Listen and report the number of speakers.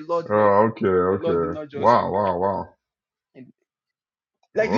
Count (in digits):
2